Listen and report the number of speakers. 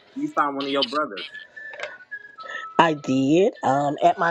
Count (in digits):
2